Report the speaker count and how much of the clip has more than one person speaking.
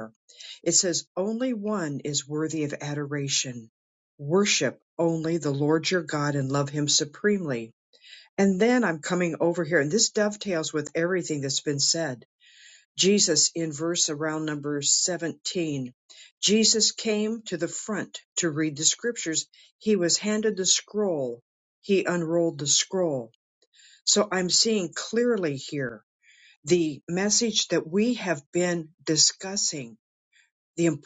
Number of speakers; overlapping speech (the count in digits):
1, no overlap